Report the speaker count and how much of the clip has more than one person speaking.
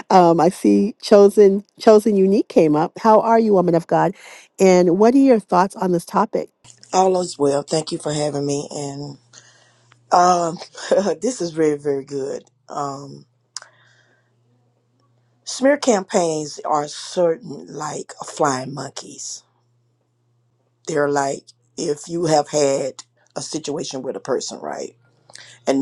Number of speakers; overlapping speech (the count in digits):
2, no overlap